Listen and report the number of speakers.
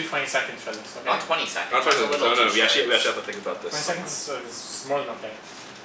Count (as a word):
three